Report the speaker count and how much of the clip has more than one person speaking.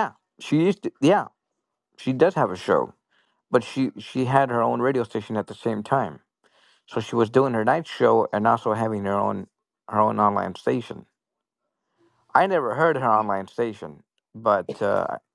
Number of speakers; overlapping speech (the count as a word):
one, no overlap